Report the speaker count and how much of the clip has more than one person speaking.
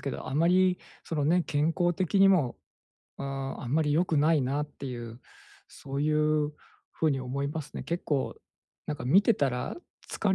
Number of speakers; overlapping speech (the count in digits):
1, no overlap